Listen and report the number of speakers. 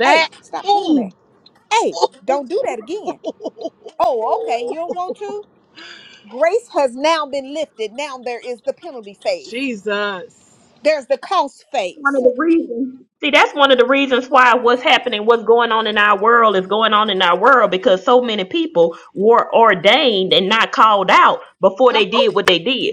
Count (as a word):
three